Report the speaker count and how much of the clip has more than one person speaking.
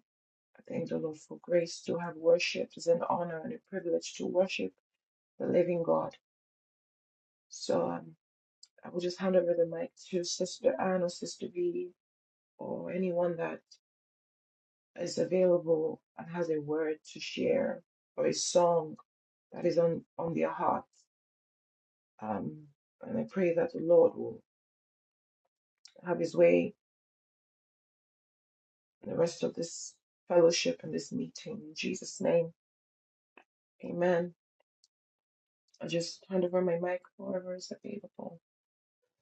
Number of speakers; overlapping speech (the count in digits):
1, no overlap